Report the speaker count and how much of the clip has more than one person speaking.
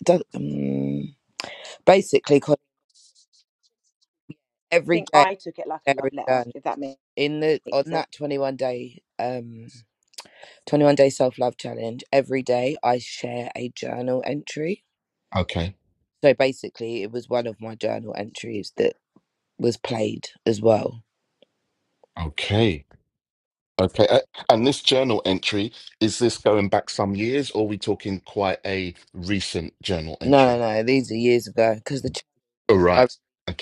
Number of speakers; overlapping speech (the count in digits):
3, about 5%